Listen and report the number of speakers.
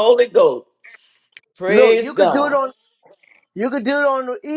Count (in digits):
2